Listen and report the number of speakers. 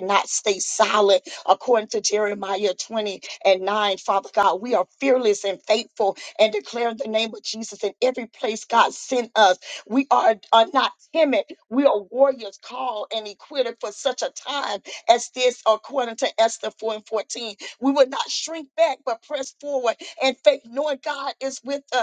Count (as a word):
one